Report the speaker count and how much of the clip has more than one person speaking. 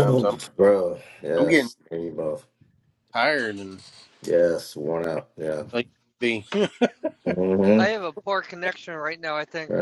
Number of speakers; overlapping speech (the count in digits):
3, about 4%